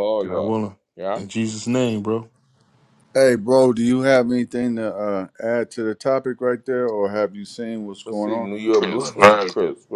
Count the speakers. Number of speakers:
3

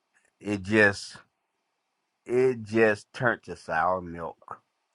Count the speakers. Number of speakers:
1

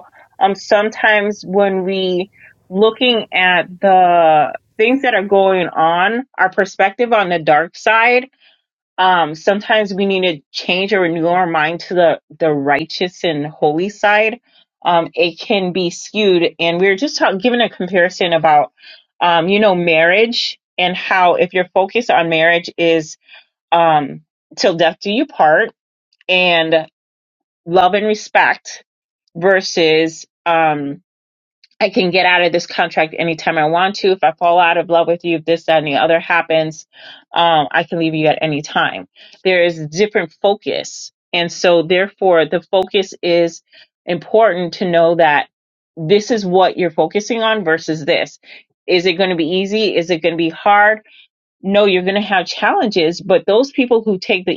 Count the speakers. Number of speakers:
1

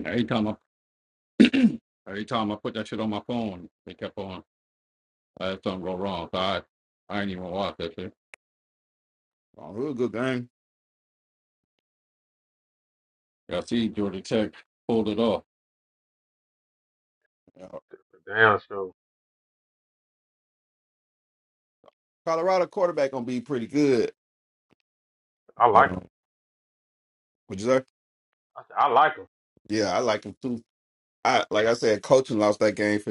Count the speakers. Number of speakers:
3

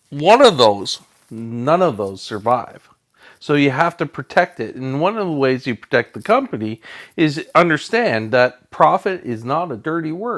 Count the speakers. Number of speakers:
1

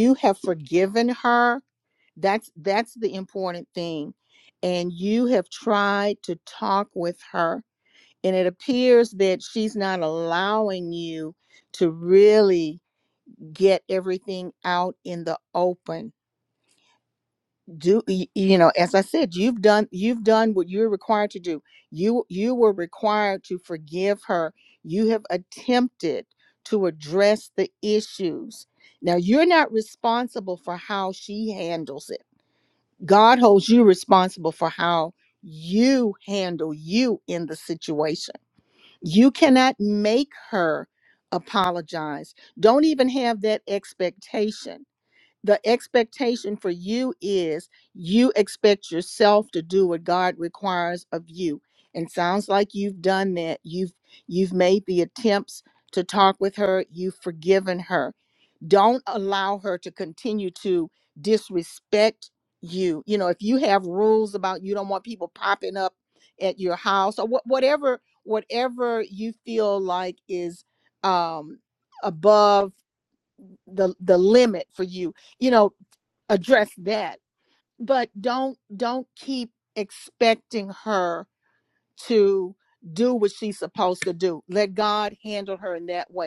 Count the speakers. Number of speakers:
1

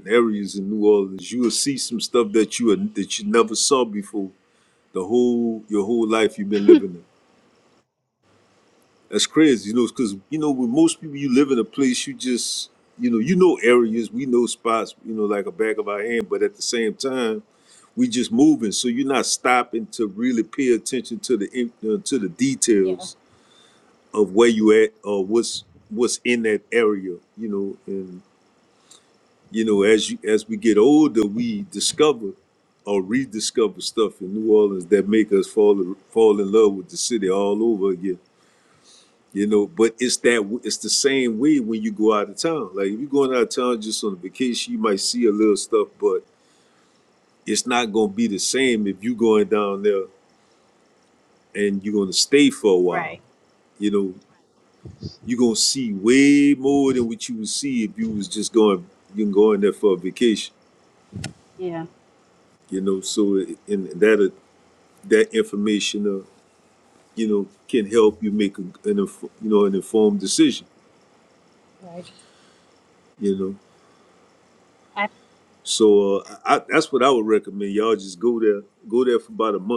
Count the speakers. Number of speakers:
2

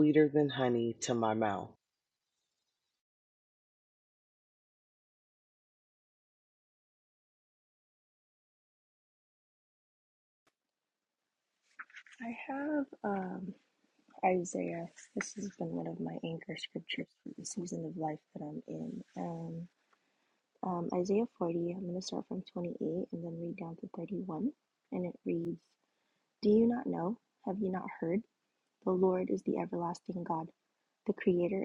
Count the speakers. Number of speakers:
2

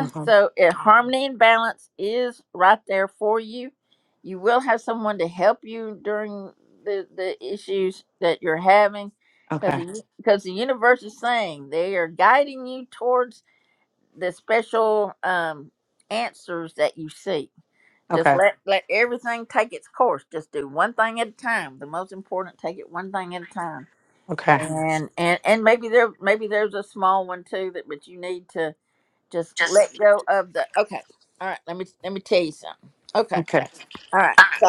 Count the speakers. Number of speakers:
2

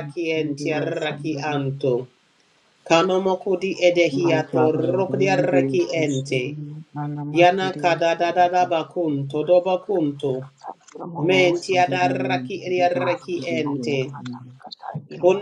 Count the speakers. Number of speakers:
3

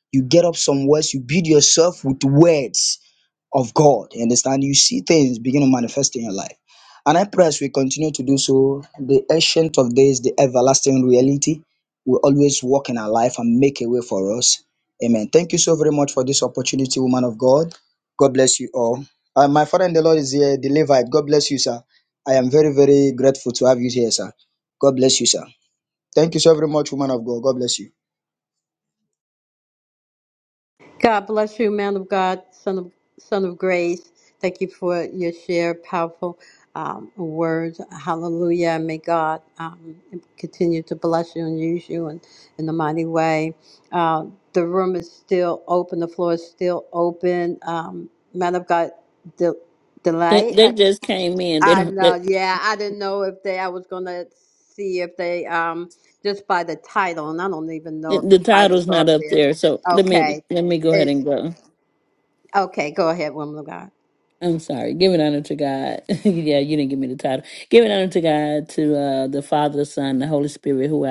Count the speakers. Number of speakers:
3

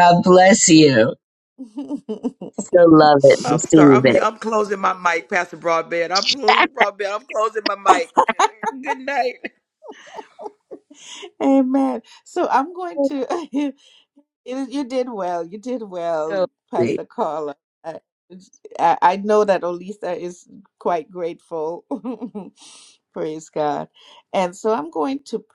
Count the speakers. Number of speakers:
3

